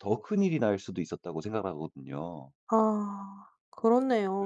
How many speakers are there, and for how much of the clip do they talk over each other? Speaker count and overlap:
two, about 1%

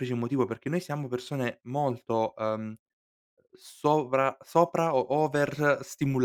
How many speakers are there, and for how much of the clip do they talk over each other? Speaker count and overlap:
one, no overlap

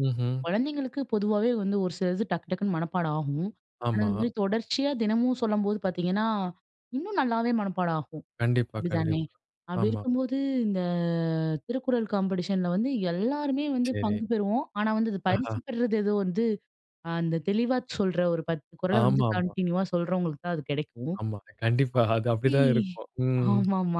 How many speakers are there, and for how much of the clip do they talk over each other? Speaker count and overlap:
two, about 10%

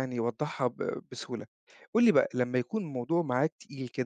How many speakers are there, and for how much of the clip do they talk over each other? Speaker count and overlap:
one, no overlap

